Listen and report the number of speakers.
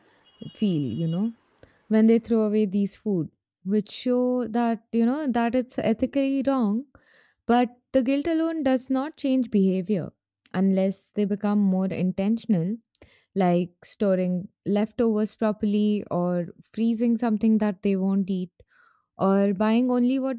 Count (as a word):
one